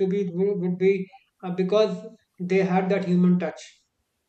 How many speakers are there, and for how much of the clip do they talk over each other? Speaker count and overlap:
one, no overlap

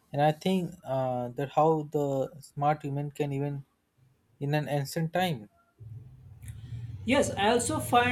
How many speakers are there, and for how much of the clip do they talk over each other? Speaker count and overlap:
two, no overlap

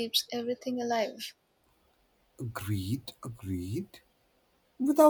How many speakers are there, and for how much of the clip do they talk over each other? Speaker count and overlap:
two, no overlap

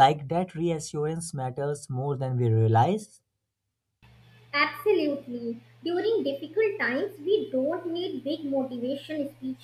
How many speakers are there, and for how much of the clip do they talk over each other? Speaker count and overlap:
two, no overlap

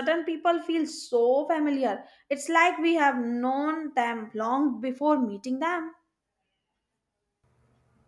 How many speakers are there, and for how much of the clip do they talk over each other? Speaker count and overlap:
one, no overlap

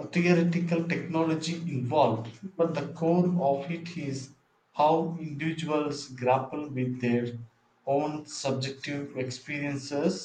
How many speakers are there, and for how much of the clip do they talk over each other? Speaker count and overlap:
one, no overlap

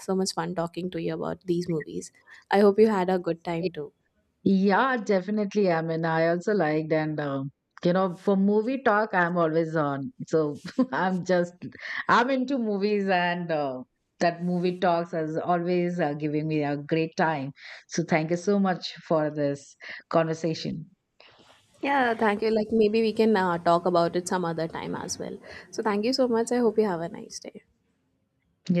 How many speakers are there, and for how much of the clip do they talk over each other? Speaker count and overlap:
two, no overlap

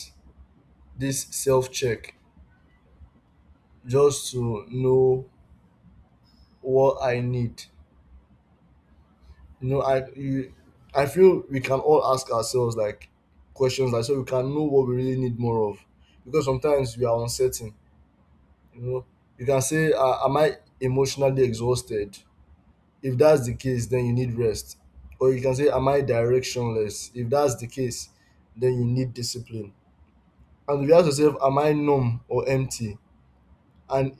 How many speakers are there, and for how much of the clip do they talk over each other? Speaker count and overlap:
one, no overlap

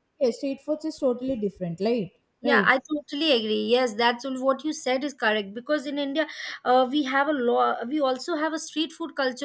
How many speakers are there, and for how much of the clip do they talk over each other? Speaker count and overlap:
two, about 3%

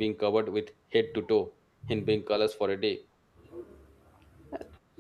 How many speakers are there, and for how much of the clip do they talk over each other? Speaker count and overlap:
one, no overlap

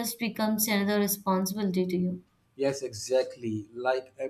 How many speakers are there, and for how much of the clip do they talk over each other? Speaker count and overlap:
two, no overlap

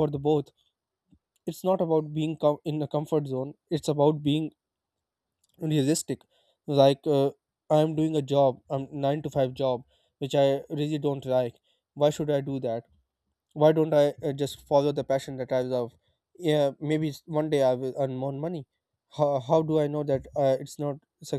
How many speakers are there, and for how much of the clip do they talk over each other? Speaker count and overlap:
one, no overlap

